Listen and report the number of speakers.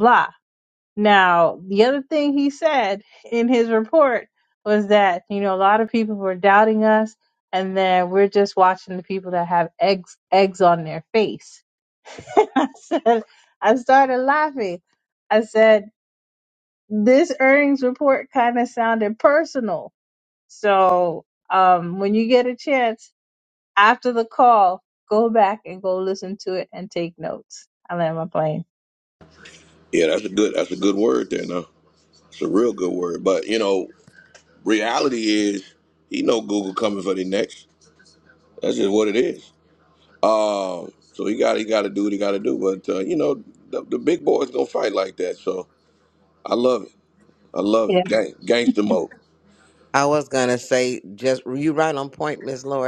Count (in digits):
3